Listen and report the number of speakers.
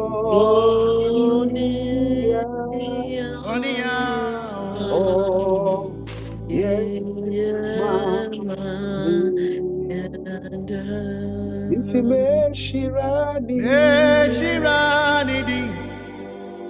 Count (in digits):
3